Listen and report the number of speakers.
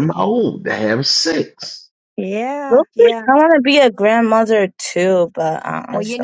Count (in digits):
3